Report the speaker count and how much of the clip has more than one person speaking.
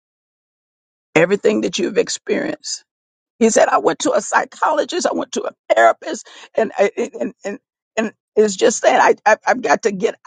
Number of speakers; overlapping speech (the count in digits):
1, no overlap